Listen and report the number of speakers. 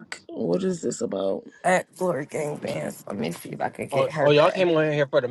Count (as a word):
three